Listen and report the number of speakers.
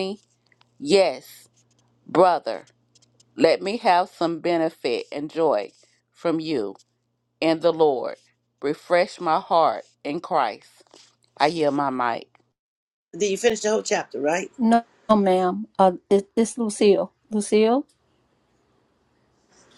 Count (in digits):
3